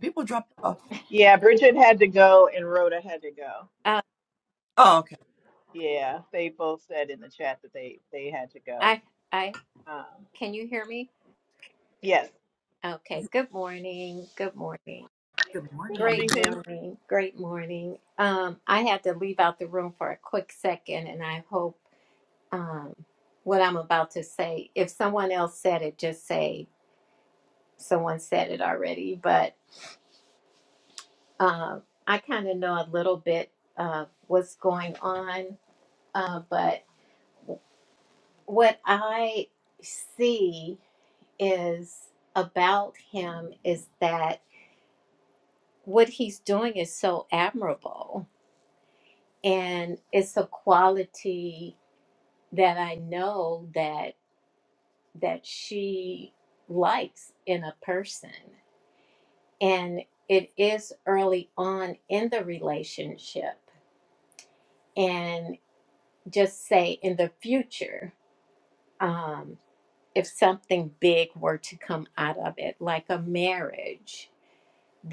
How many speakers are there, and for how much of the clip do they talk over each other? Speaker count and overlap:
three, about 1%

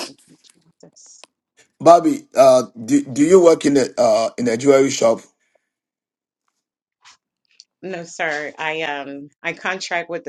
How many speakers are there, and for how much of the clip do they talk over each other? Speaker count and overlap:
two, no overlap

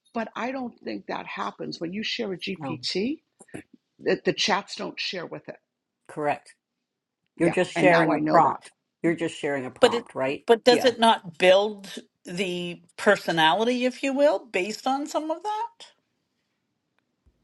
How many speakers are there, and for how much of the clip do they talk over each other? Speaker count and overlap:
three, about 10%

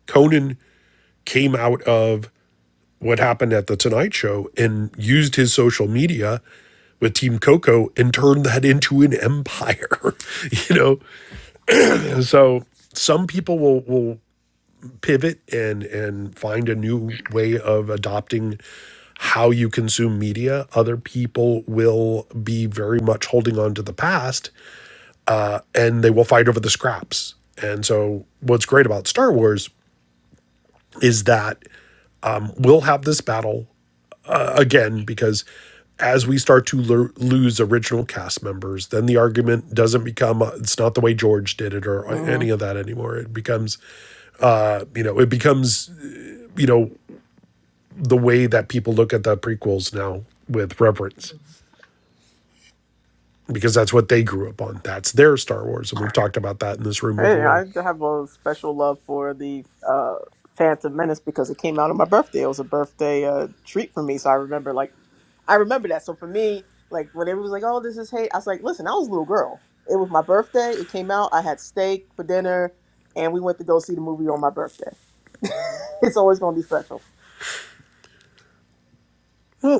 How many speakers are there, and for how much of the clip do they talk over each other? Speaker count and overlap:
two, about 1%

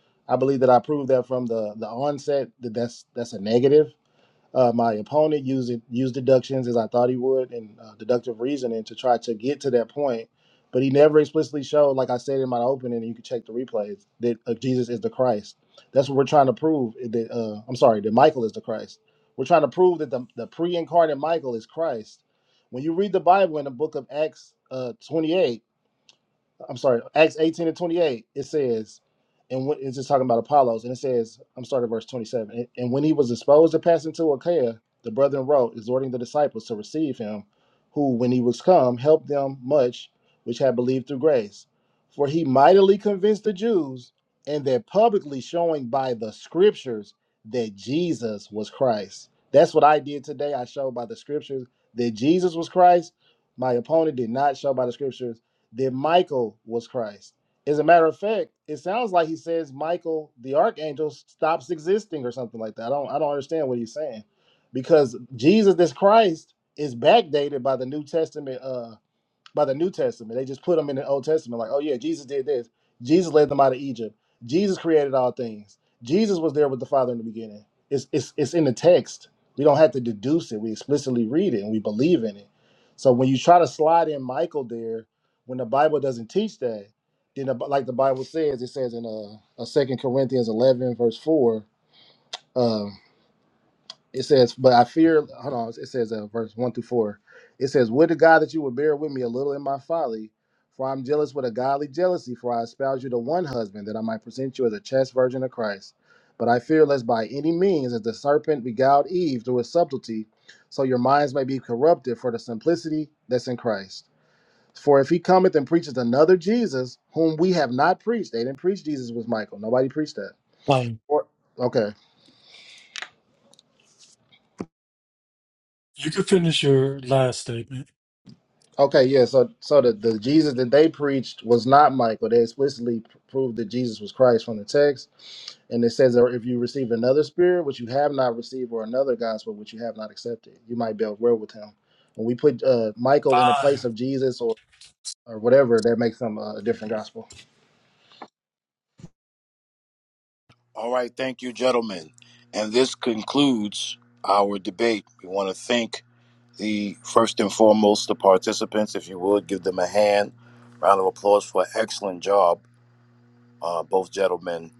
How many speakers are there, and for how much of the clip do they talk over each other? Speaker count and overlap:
three, under 1%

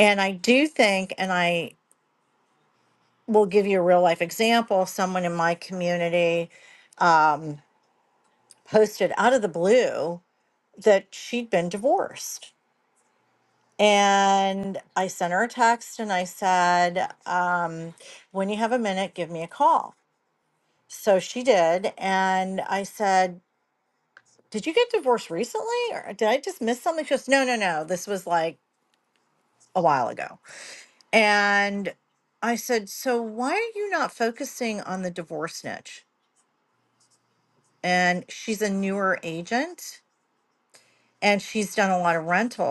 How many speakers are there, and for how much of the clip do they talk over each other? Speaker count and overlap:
one, no overlap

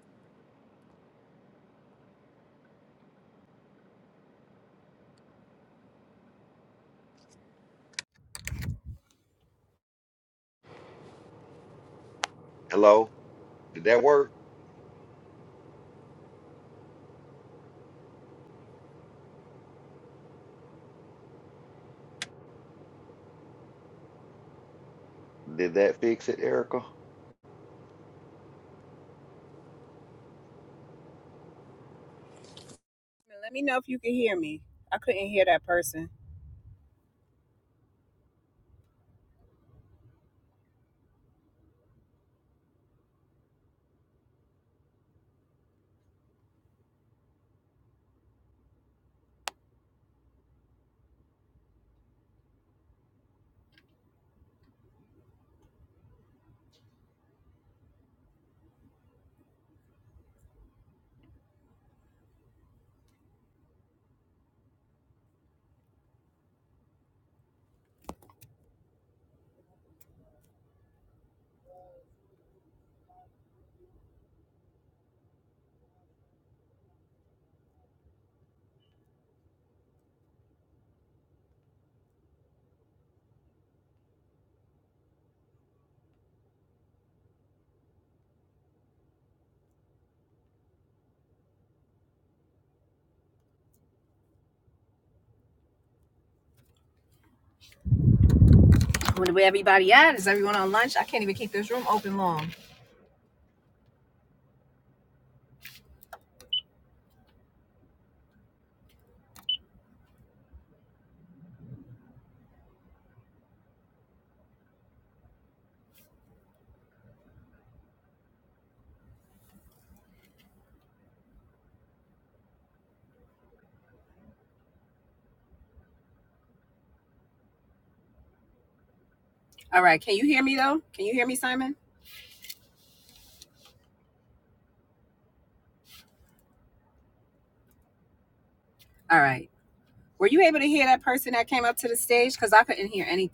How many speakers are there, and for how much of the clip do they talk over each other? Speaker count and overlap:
two, no overlap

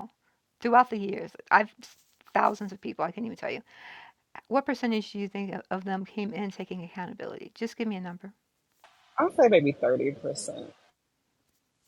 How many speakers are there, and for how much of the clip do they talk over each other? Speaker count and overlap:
two, no overlap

